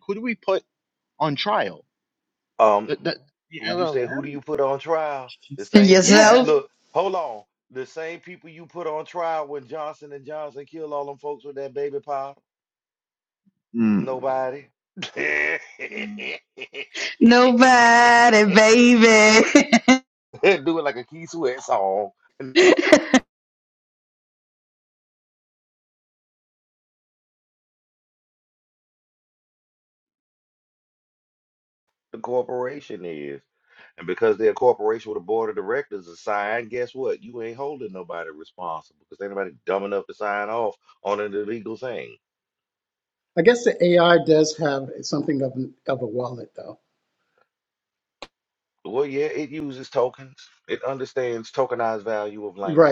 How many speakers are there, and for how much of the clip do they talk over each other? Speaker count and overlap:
4, about 4%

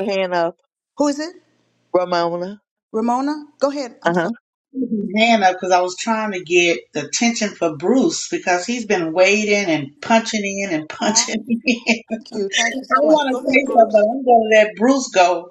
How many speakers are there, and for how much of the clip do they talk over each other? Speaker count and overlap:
3, about 12%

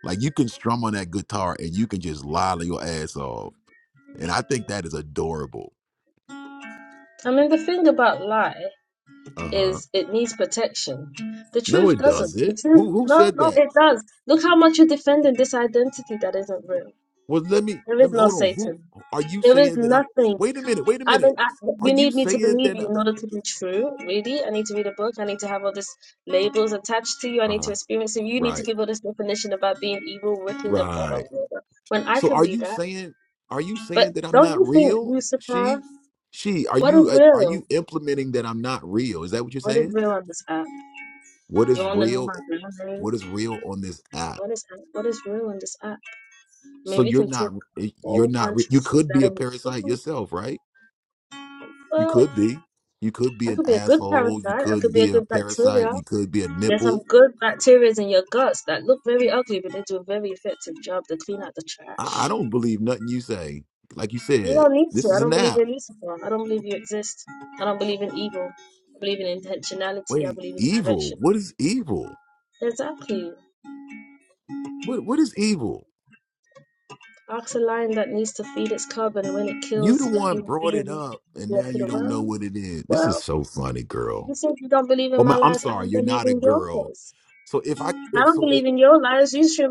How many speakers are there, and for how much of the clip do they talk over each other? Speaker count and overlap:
2, about 26%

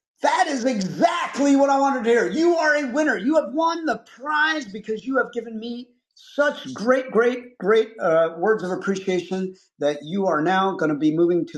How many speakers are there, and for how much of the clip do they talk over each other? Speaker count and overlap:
1, no overlap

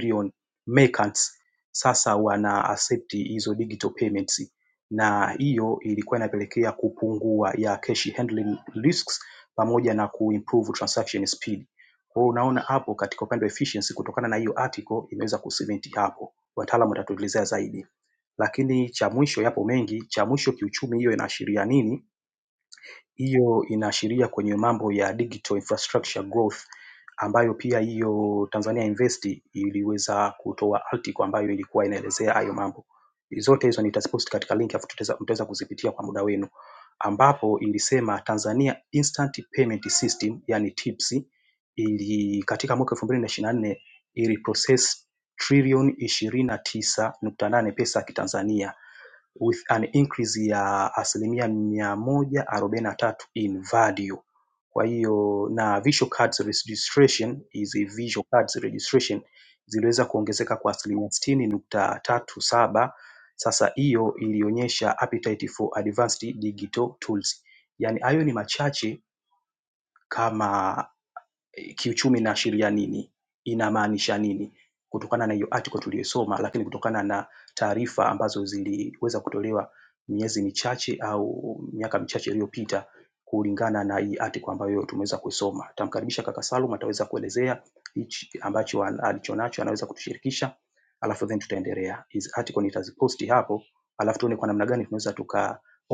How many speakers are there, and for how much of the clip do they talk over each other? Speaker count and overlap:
1, no overlap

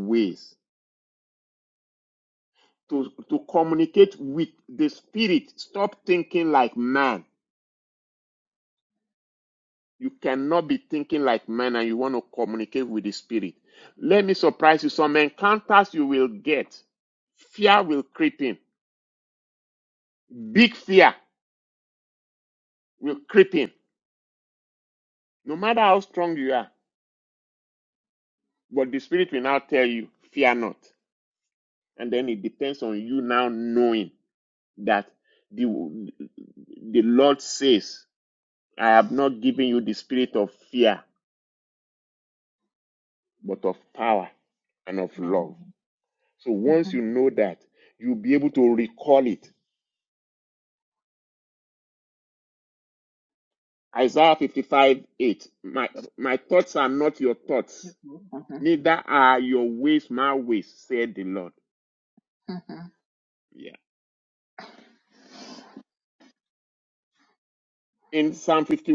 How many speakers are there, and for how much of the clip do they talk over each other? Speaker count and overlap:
2, about 1%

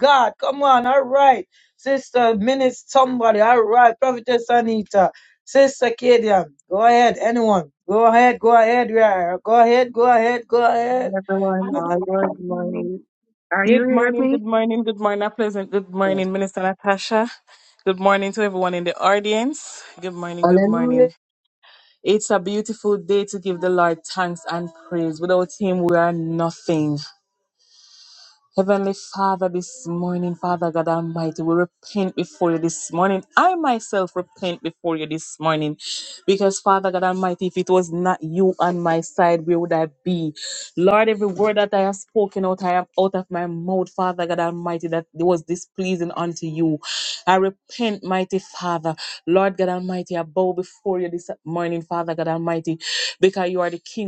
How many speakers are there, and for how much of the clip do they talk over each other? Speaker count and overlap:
3, about 4%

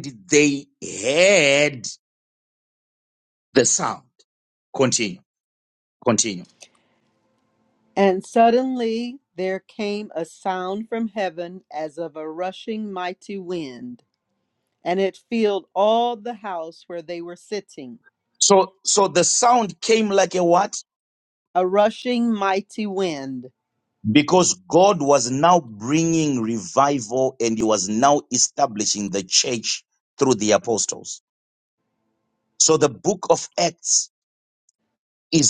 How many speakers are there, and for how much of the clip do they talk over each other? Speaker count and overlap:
2, no overlap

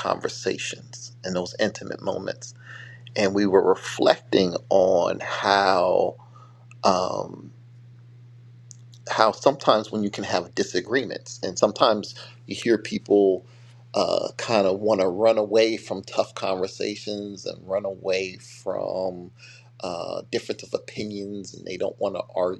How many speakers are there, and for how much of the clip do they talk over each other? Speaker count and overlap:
1, no overlap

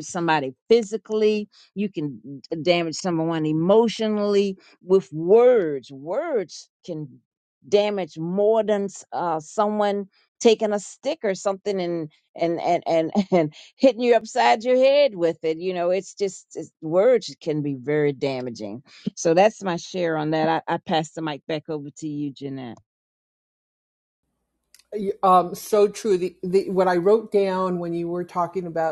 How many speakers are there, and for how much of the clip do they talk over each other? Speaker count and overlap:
2, no overlap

